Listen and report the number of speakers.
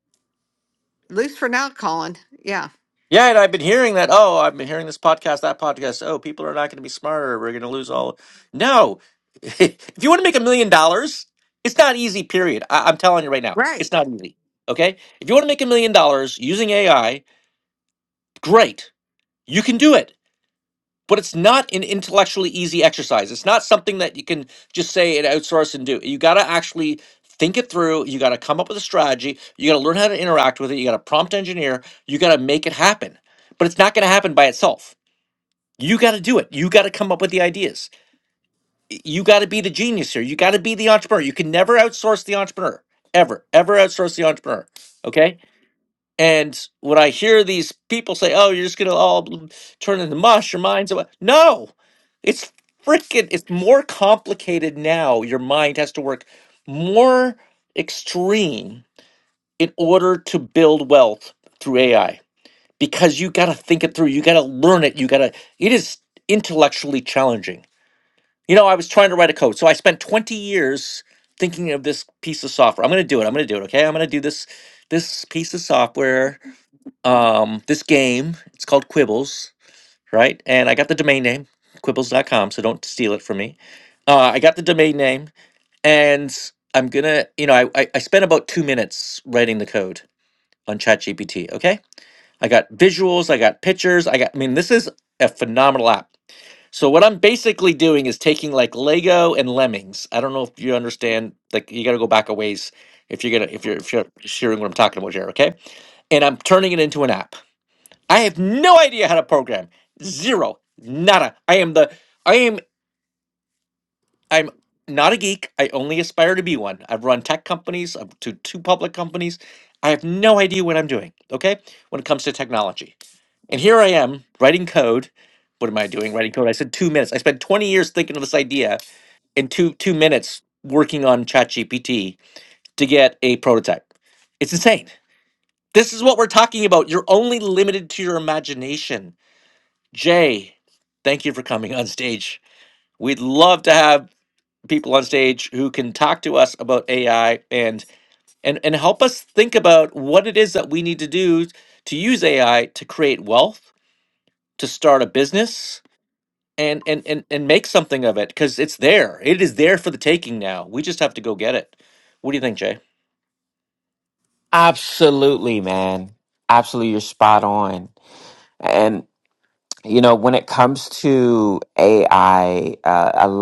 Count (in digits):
3